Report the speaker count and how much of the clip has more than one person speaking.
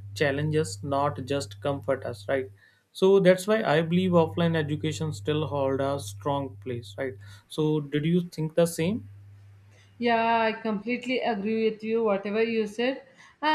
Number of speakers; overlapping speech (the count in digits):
2, no overlap